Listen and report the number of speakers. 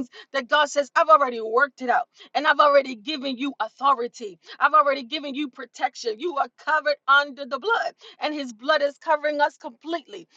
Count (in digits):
1